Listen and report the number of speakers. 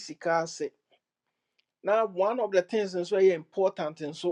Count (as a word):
one